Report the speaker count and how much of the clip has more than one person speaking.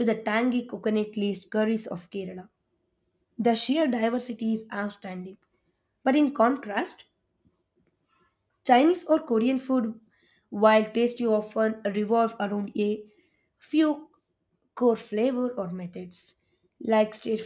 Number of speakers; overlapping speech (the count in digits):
1, no overlap